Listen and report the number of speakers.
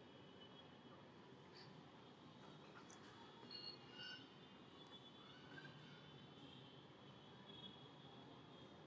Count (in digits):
0